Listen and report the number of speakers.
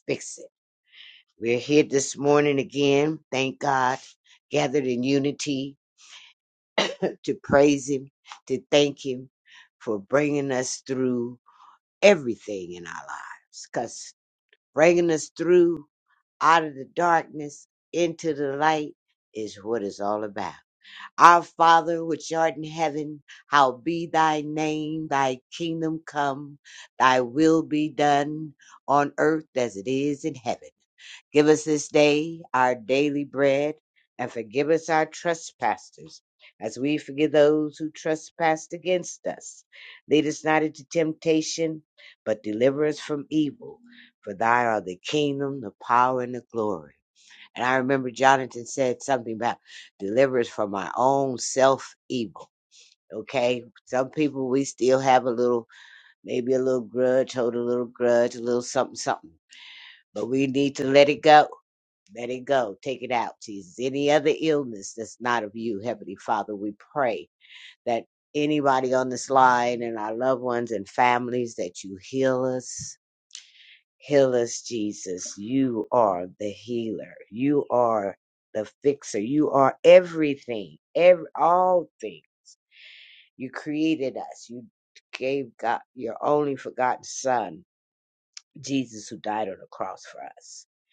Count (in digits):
1